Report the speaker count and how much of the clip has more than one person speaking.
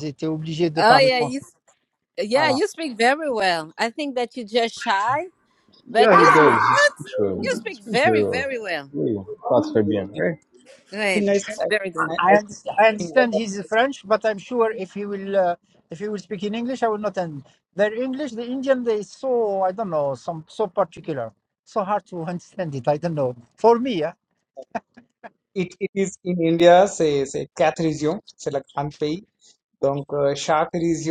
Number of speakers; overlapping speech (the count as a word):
four, about 12%